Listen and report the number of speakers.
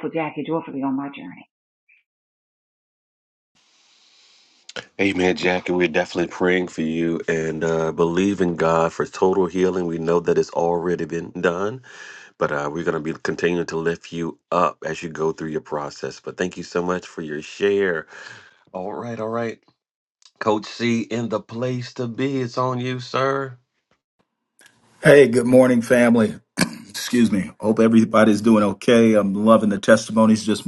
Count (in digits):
3